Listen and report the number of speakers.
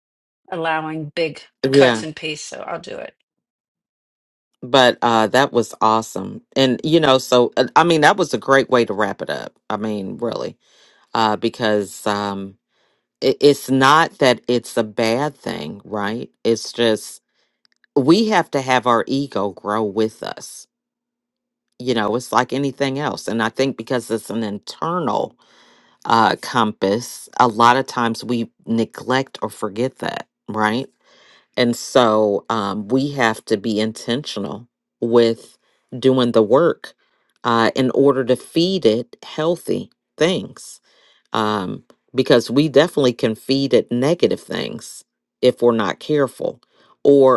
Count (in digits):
2